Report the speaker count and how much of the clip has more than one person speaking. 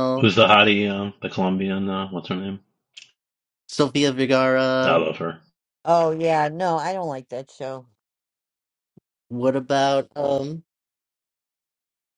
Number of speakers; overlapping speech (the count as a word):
three, about 2%